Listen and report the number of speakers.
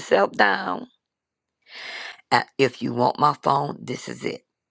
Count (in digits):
1